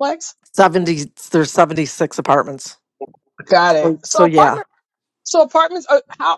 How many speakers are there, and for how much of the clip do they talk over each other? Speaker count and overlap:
2, about 12%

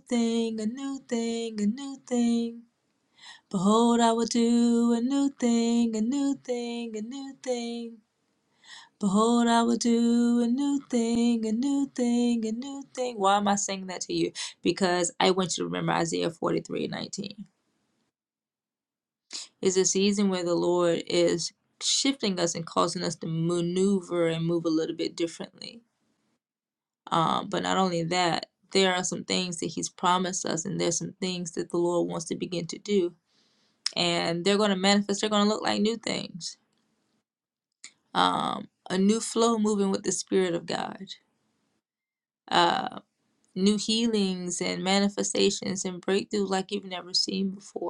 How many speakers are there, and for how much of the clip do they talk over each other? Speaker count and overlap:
1, no overlap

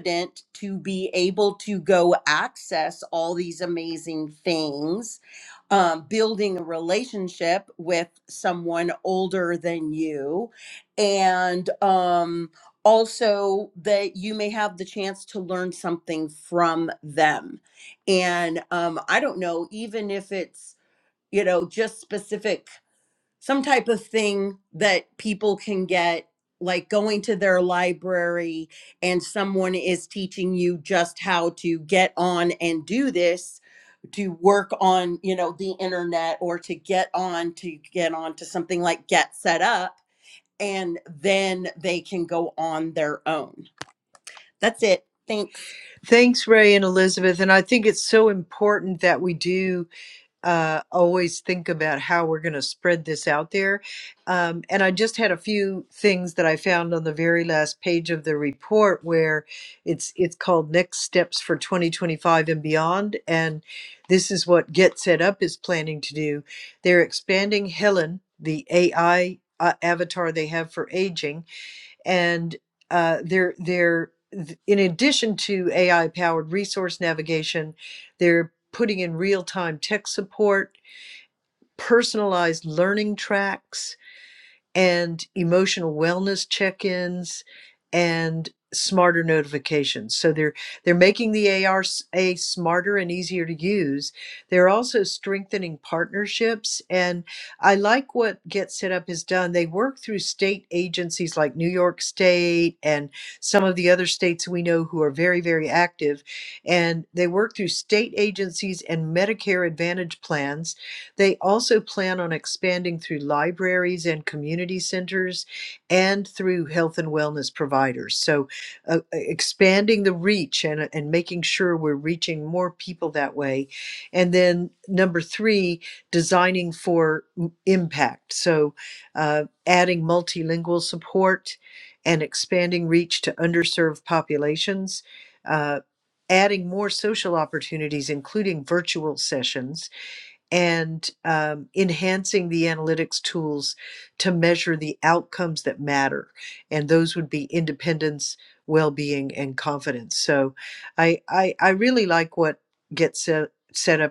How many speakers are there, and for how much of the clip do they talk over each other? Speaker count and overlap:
2, no overlap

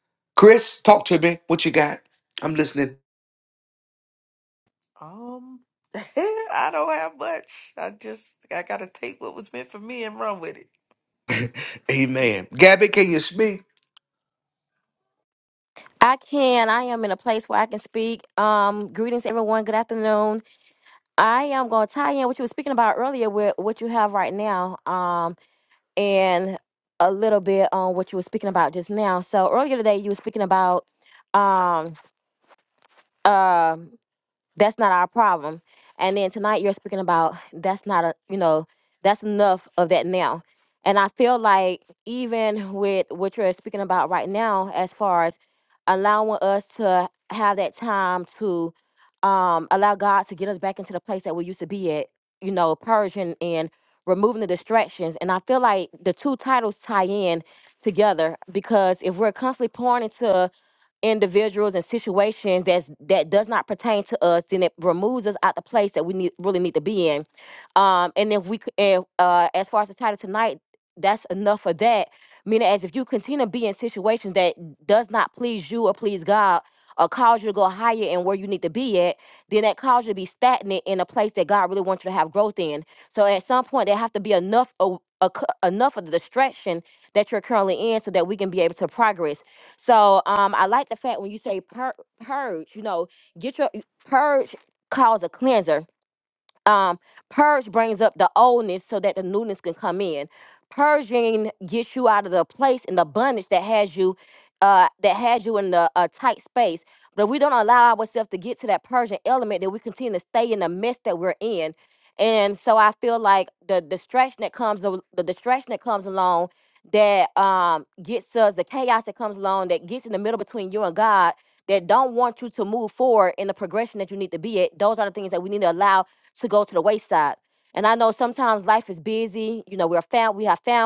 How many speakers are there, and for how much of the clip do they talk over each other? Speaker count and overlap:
3, no overlap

